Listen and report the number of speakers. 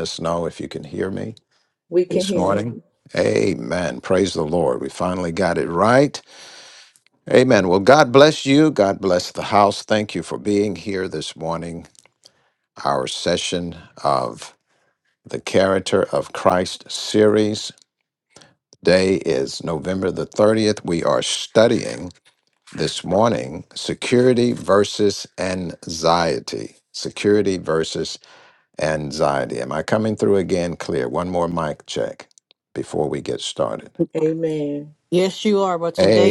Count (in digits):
3